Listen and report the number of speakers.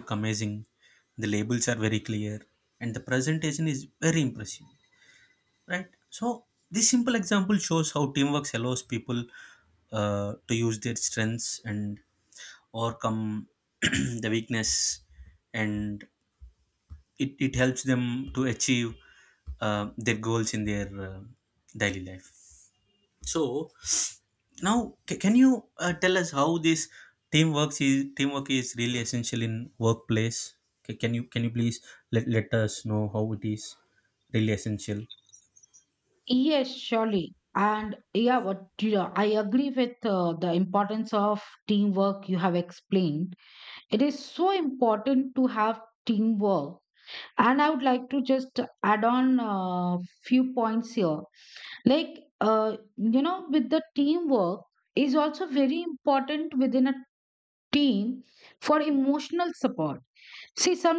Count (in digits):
2